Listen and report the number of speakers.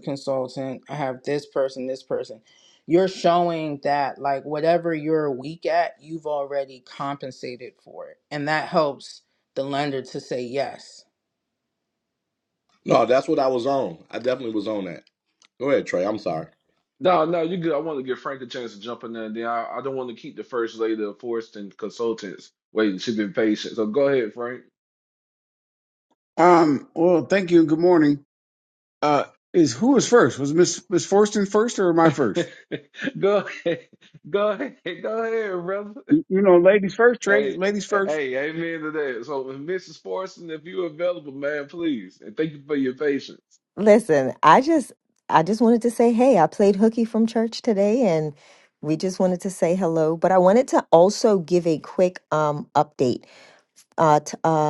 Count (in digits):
5